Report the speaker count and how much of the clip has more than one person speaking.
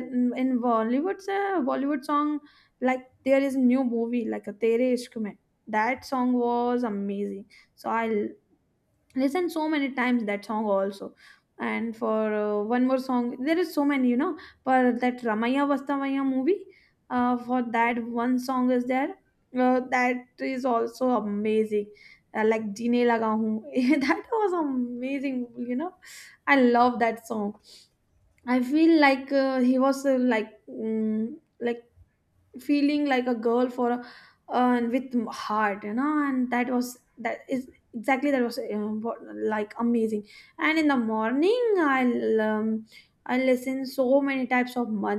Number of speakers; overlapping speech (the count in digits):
1, no overlap